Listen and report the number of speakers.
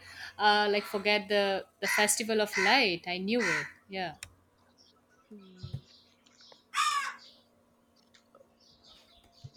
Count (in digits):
1